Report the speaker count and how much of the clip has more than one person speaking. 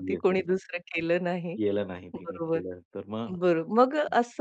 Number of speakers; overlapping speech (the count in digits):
2, about 20%